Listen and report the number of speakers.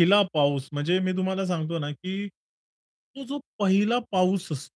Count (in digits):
1